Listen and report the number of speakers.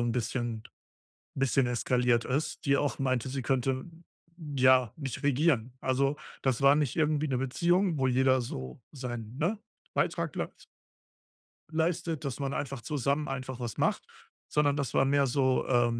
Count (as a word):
one